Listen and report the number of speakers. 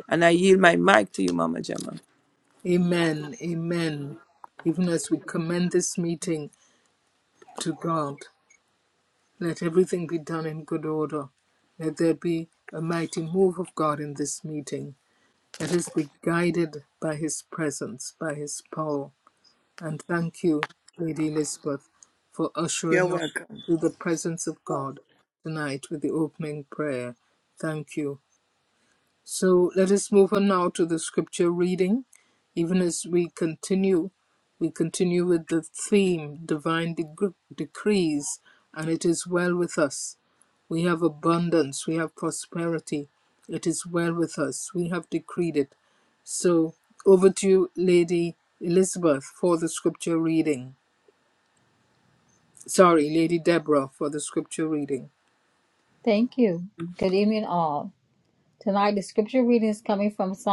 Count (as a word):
three